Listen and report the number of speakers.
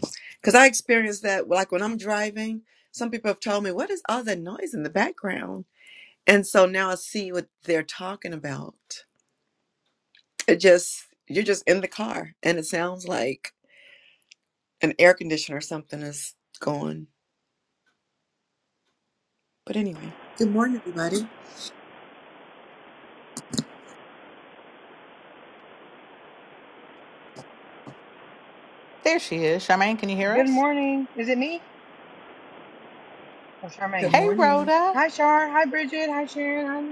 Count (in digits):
3